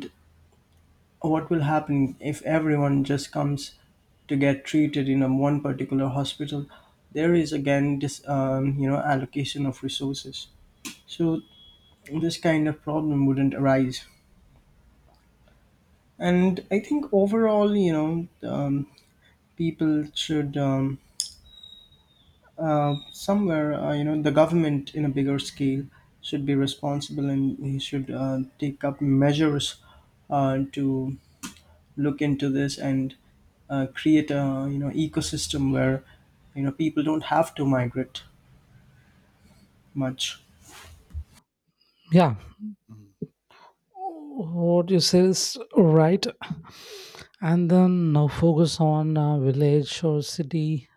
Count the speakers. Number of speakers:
two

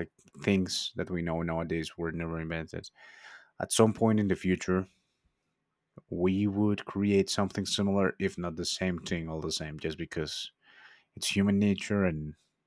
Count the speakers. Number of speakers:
one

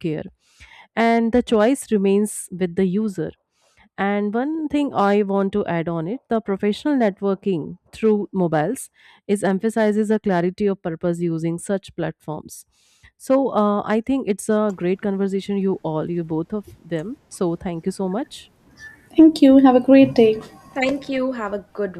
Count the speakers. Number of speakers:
three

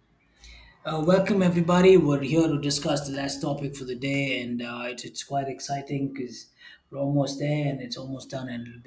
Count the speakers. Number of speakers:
one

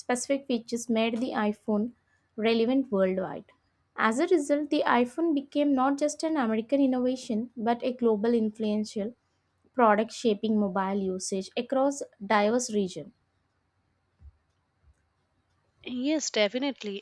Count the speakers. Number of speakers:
two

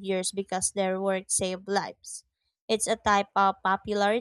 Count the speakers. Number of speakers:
one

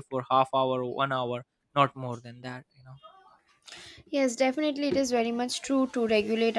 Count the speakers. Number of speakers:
two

